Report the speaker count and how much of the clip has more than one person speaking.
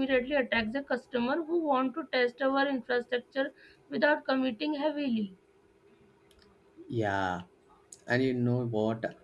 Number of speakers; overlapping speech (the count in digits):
2, no overlap